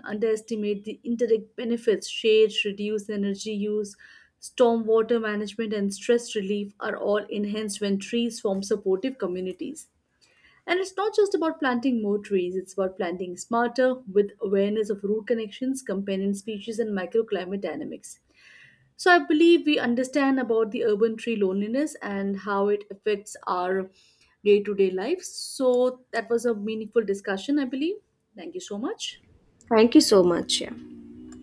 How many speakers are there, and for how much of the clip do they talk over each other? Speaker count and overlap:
two, no overlap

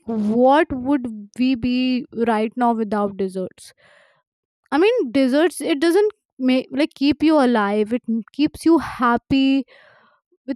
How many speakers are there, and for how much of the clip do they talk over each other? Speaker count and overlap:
one, no overlap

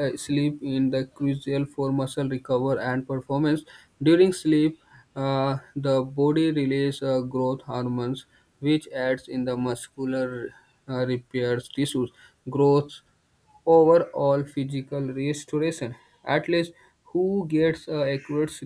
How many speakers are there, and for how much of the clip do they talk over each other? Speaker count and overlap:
one, no overlap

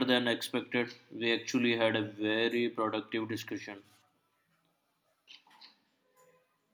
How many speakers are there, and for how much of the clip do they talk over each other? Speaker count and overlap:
one, no overlap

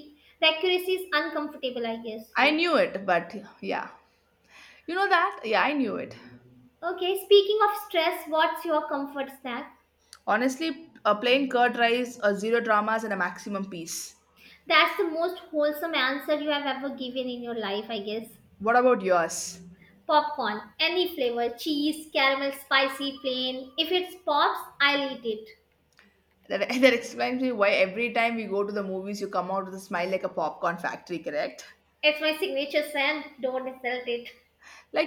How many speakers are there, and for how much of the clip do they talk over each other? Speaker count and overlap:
two, no overlap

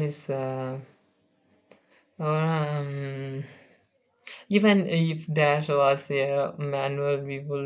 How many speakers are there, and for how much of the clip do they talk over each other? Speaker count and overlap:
one, no overlap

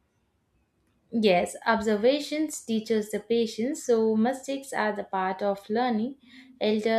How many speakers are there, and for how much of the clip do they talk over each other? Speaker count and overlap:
one, no overlap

